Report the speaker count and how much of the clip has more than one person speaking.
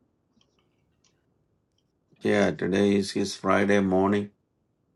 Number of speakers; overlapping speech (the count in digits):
1, no overlap